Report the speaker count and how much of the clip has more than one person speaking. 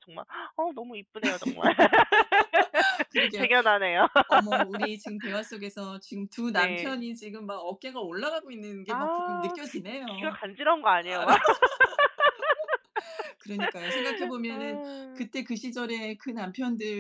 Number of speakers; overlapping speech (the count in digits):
2, about 12%